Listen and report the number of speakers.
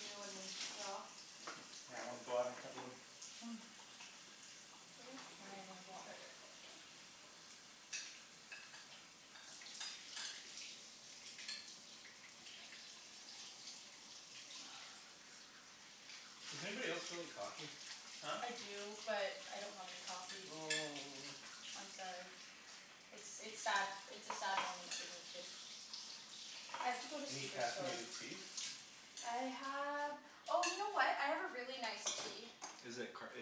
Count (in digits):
3